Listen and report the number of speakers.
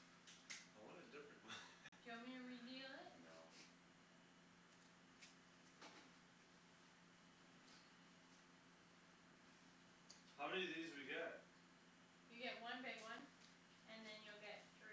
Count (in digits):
3